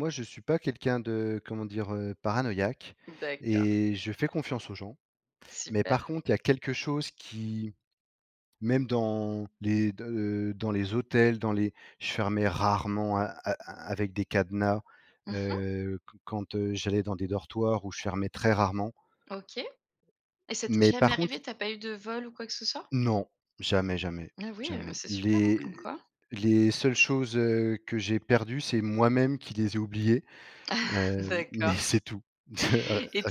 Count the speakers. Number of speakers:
2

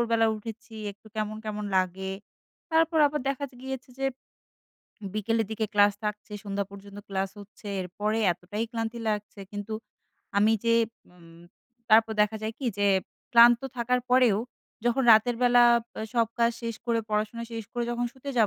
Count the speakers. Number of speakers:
1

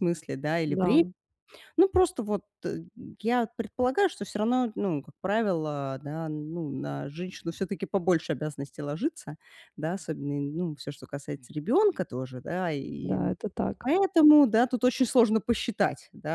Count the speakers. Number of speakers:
2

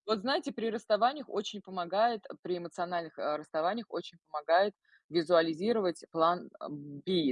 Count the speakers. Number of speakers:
1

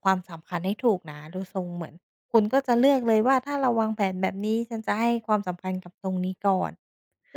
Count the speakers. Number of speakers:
1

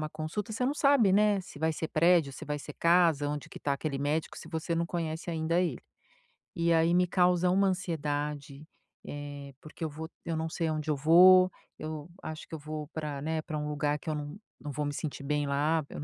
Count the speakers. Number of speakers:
1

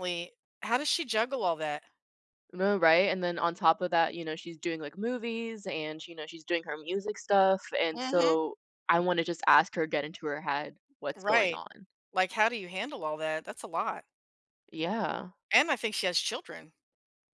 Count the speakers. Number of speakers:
2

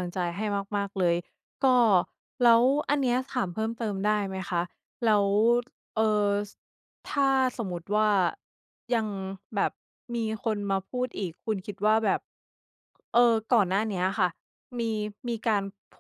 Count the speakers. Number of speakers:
1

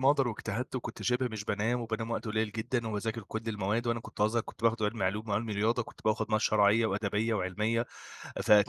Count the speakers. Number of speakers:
1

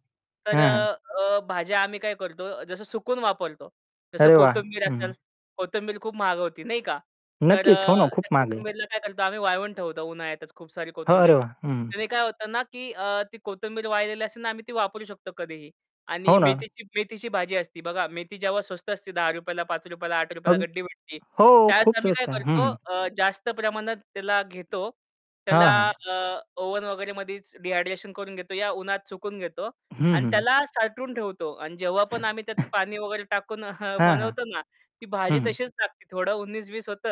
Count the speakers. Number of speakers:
2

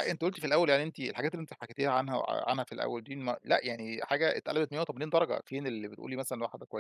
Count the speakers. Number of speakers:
1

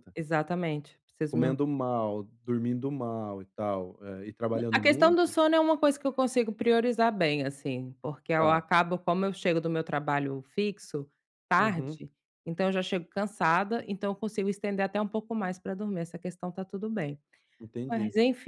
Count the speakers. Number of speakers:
2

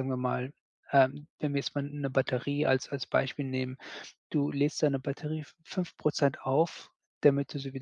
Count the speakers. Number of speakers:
1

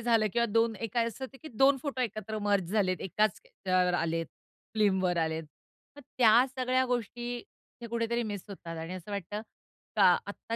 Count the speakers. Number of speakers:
1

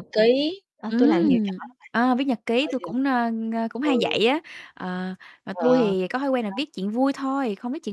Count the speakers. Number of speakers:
2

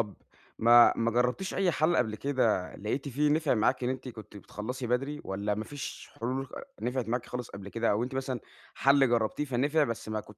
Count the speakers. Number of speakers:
1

